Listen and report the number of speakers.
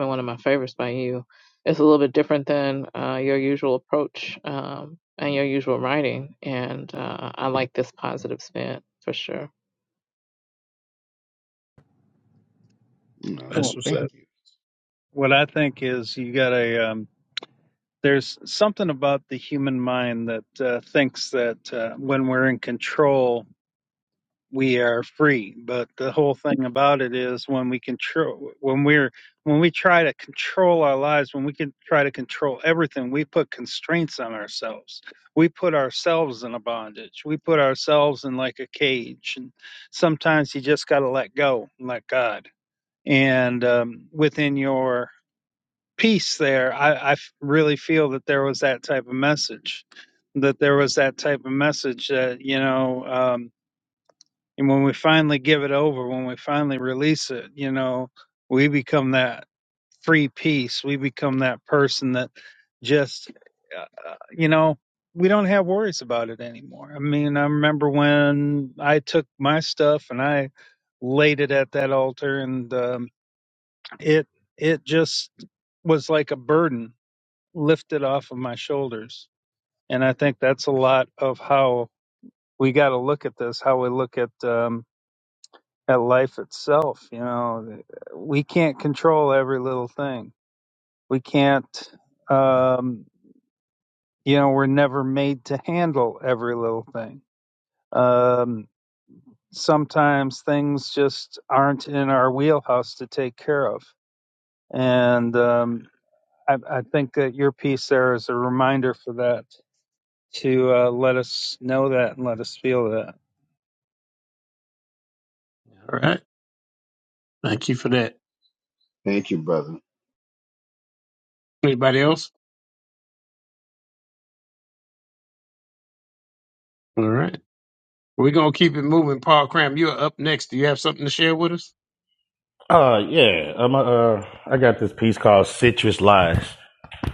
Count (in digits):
5